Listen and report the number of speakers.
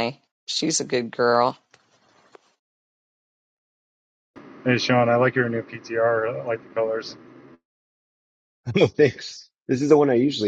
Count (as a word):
three